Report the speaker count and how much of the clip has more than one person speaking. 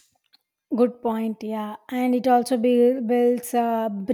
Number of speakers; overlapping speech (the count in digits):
1, no overlap